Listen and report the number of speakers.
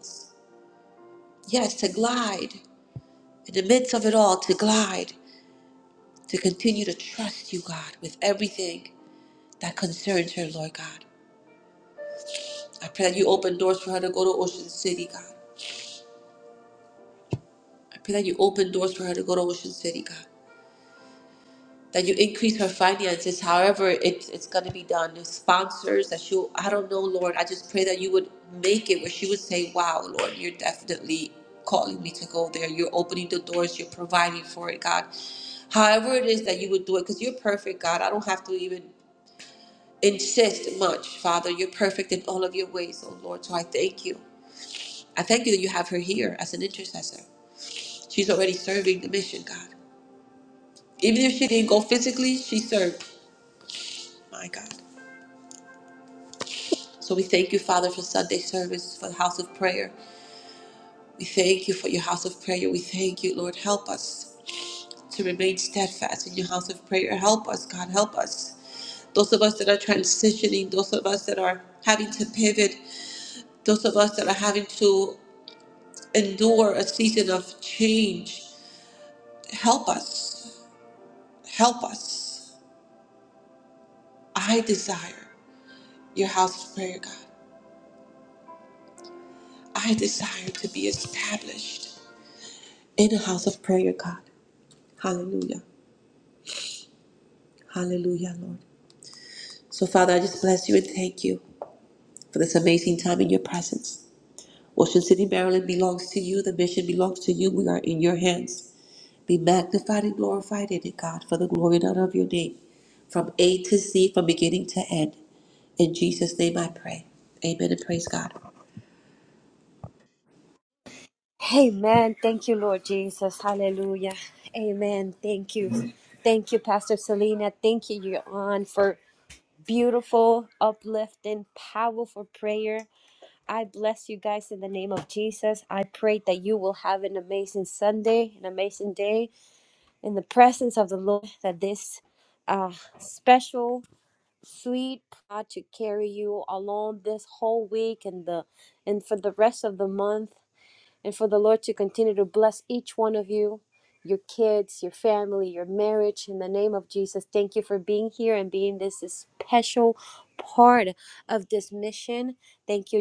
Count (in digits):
2